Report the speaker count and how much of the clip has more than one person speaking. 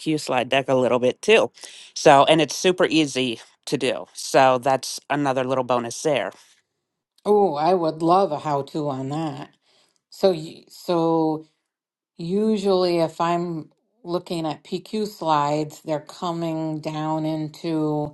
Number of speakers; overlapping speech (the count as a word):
two, no overlap